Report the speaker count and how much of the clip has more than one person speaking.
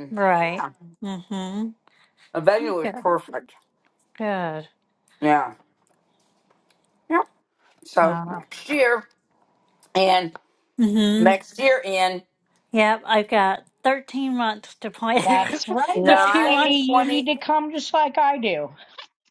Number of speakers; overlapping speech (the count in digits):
3, about 13%